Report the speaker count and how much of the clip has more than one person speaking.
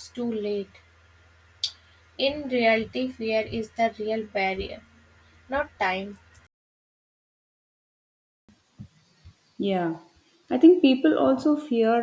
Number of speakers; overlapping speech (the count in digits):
2, no overlap